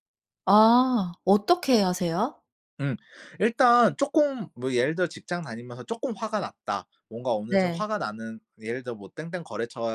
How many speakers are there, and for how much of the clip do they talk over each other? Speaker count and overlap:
2, about 3%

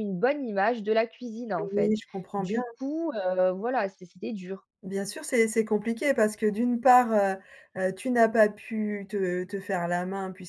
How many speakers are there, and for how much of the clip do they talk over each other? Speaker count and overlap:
2, about 5%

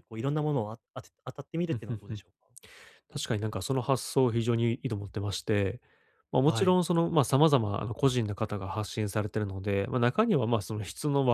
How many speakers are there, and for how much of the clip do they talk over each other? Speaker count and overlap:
2, about 6%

